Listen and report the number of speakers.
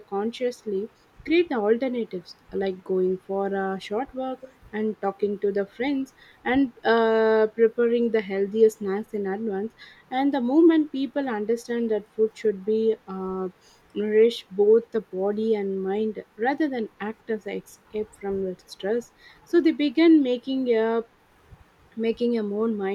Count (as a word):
one